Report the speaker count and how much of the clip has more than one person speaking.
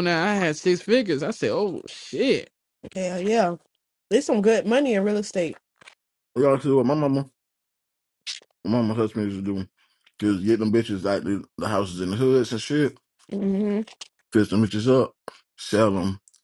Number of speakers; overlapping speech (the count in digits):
3, no overlap